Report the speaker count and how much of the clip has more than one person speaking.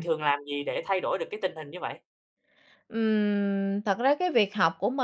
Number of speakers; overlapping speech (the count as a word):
two, about 1%